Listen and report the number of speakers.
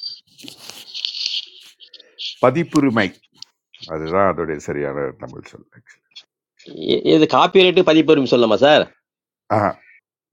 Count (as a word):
two